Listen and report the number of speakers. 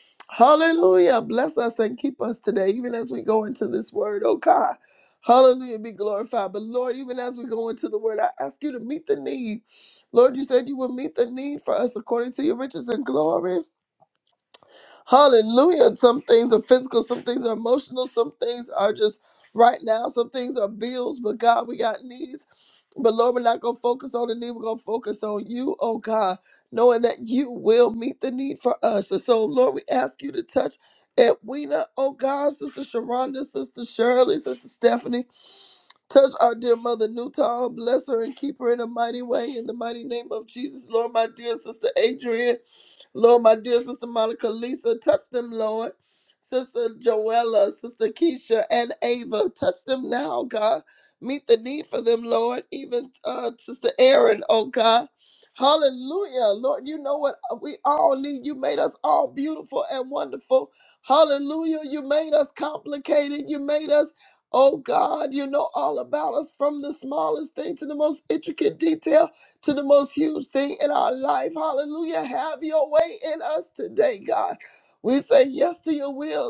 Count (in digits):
1